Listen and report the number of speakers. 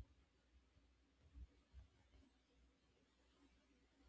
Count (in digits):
0